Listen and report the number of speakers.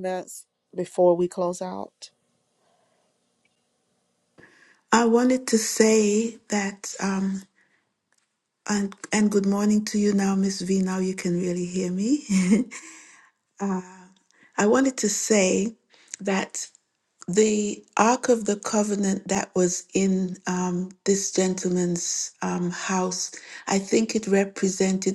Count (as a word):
two